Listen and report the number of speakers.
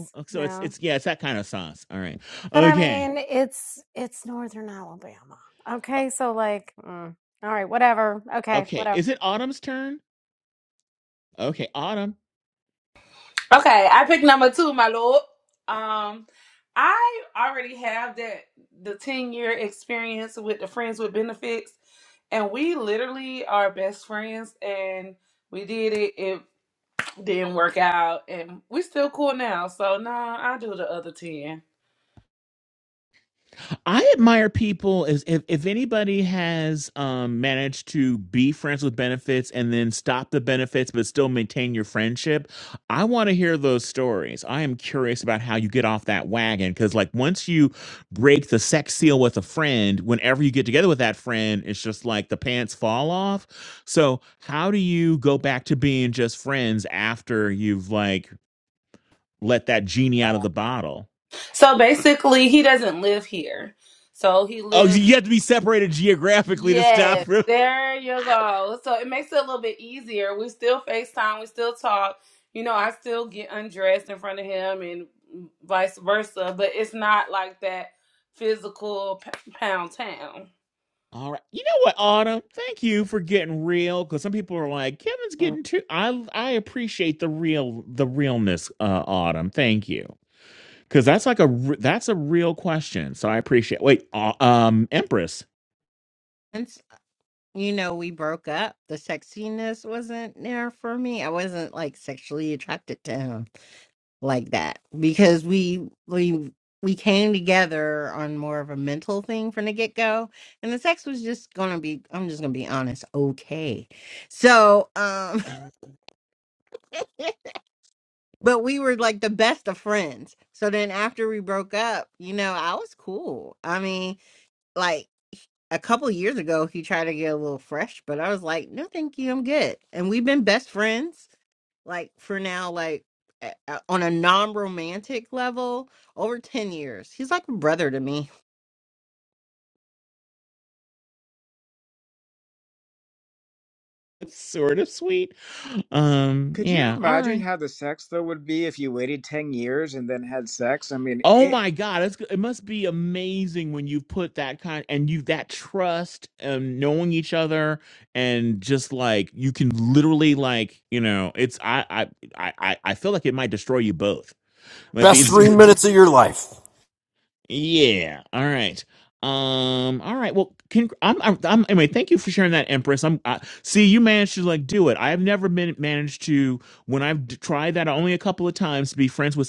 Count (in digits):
6